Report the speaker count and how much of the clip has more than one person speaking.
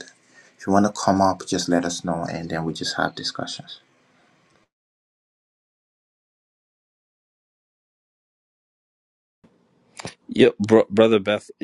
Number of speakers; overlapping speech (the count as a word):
two, no overlap